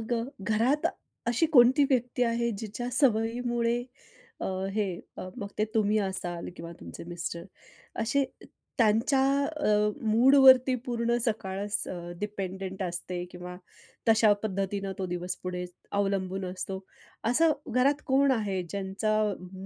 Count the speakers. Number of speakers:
1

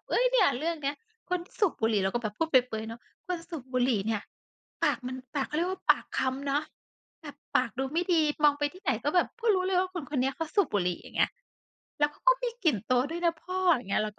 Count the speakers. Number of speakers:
1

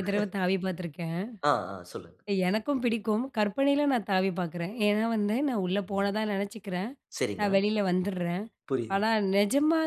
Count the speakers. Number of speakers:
2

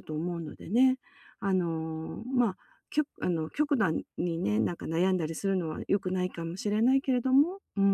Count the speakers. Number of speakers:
1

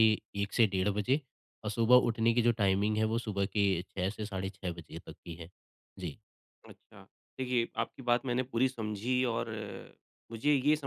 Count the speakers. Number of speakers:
2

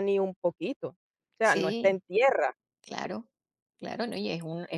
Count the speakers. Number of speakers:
2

